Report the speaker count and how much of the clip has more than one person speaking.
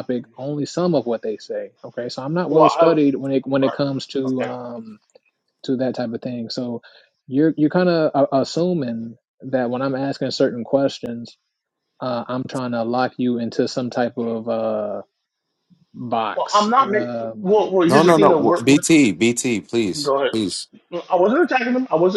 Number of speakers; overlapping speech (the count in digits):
3, about 16%